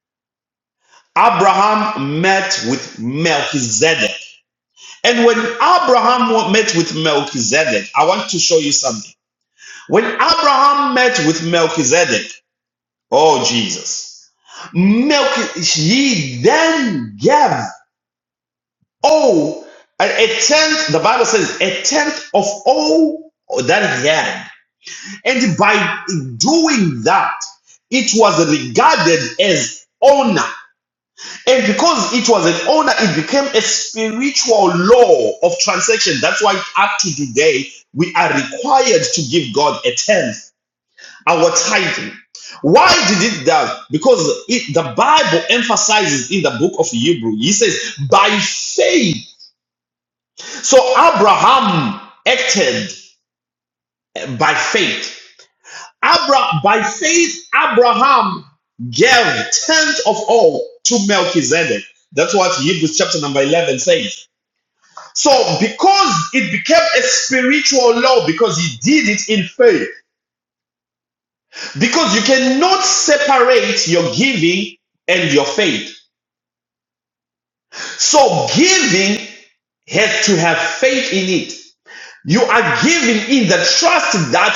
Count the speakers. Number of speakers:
one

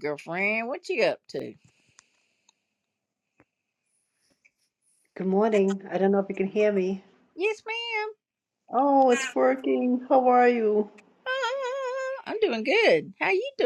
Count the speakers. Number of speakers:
two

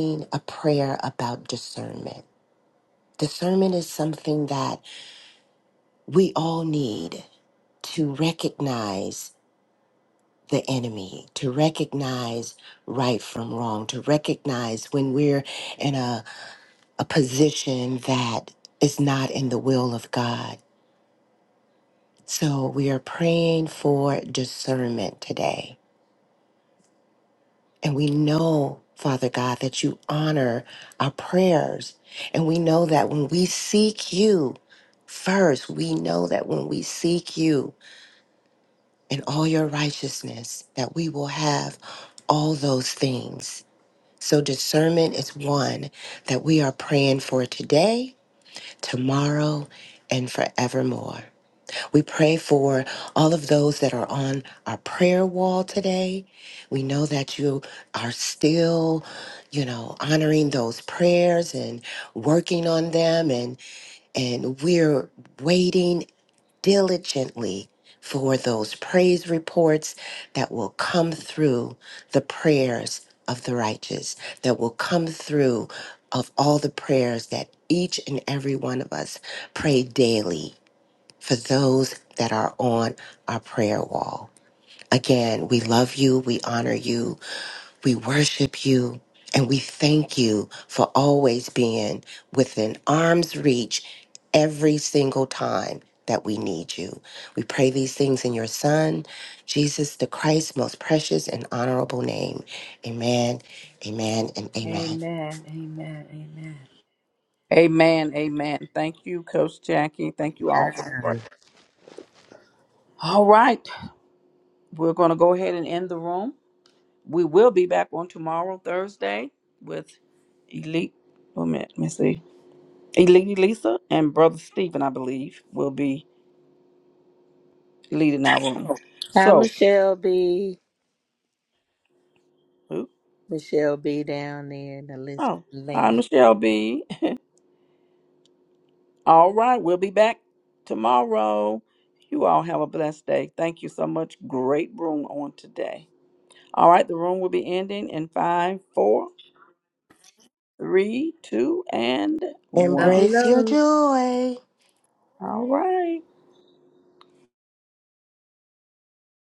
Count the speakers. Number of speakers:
four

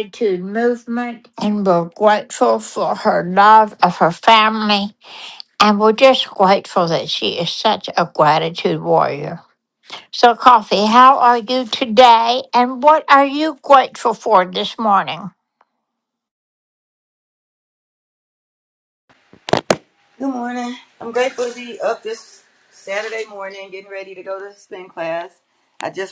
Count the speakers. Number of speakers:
two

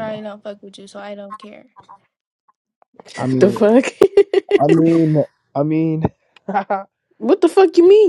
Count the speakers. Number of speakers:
three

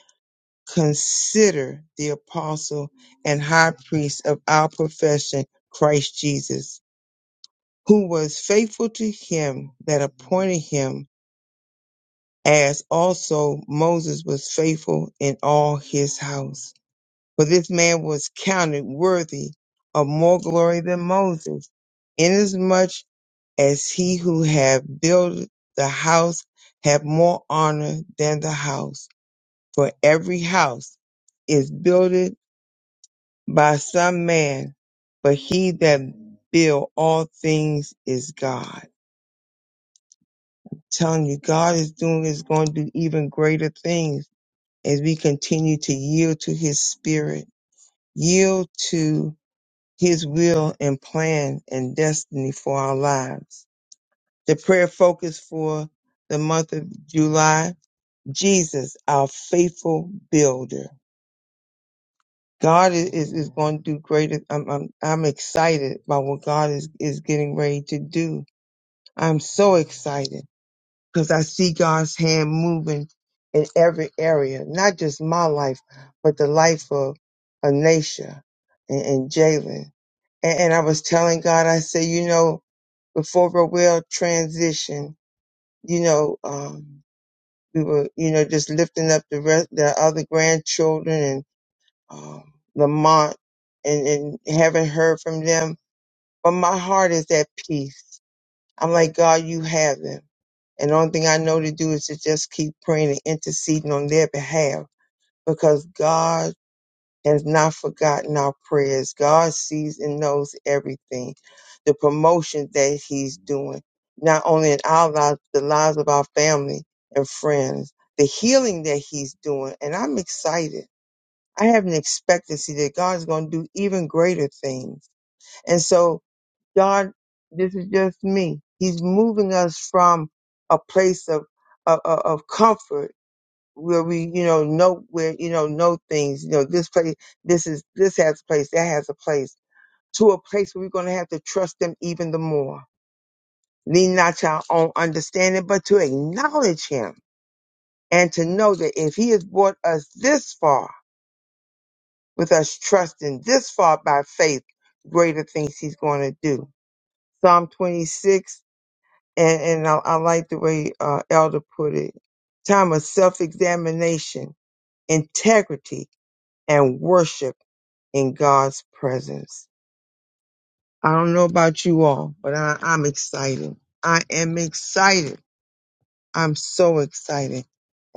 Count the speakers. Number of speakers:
one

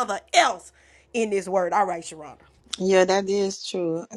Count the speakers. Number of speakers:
two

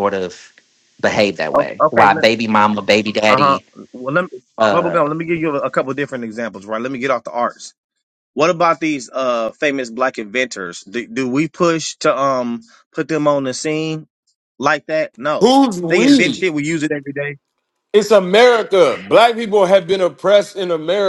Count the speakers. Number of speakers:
three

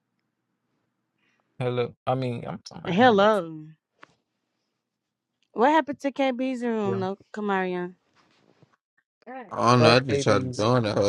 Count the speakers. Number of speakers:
three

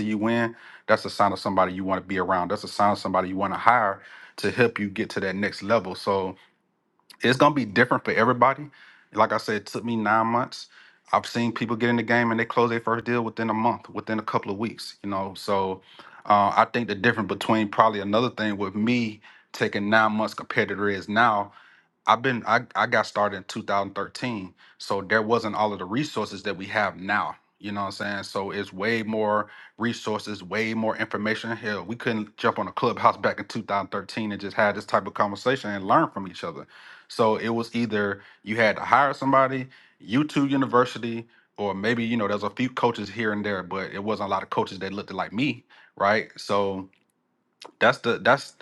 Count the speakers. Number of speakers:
one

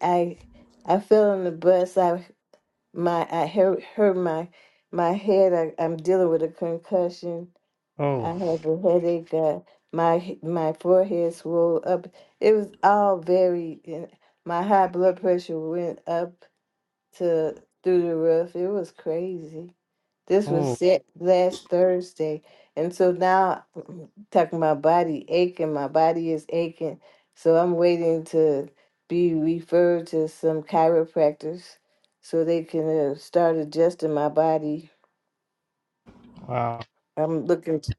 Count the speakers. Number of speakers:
two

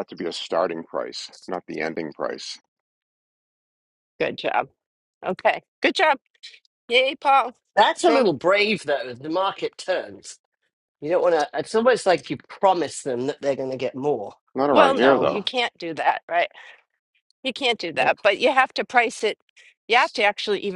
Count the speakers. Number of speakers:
three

